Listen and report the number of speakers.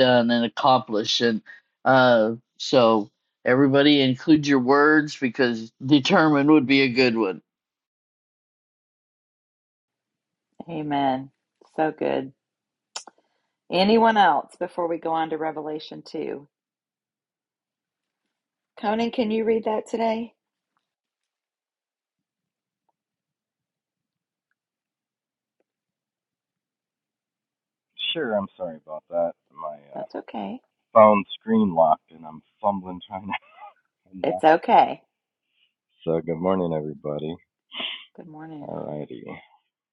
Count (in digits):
3